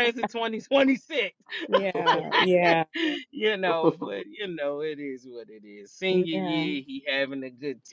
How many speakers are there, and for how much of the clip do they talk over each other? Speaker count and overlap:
two, about 7%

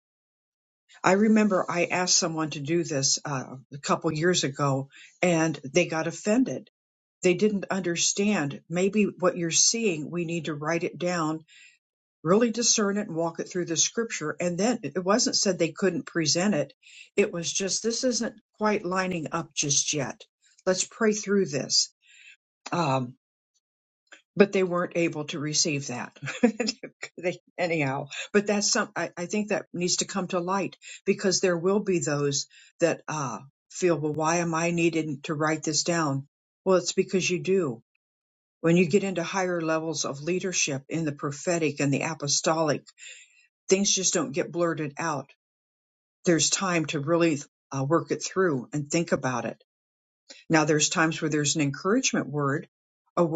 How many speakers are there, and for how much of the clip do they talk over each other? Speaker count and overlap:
one, no overlap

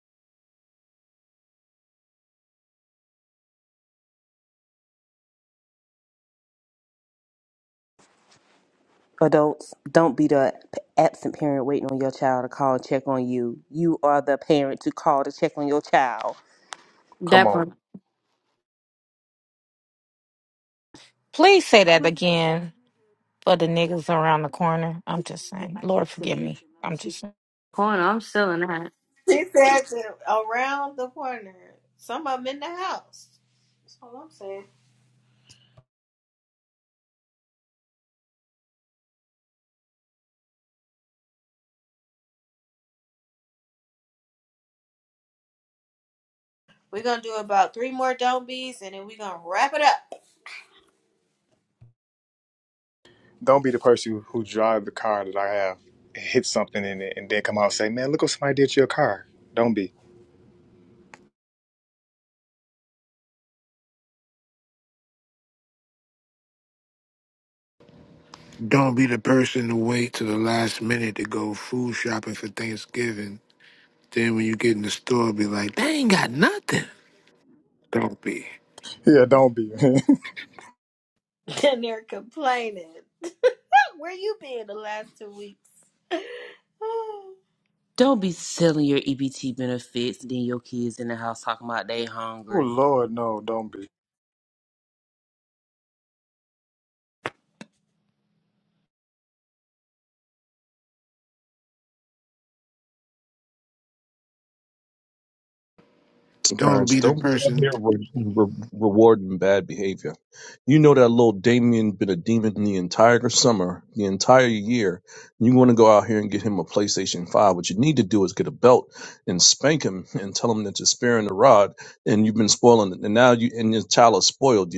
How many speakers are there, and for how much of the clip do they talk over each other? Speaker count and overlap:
seven, about 1%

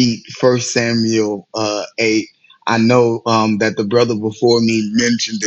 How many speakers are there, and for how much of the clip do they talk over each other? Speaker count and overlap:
one, no overlap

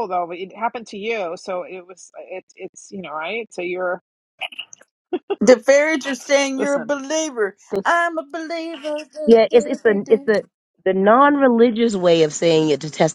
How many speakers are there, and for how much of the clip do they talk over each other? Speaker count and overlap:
three, about 10%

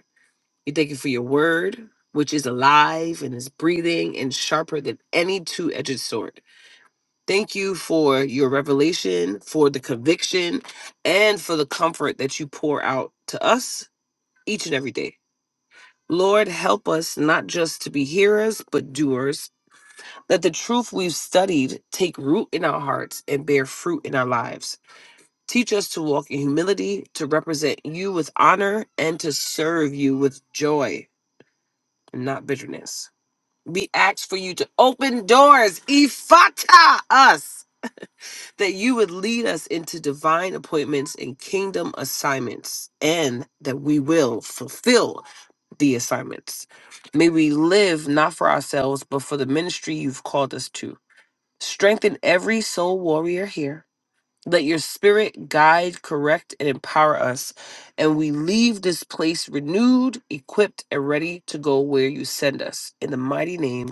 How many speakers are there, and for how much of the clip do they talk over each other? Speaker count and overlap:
one, no overlap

